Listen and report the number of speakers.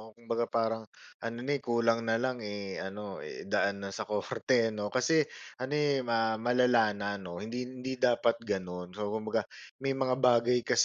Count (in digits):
1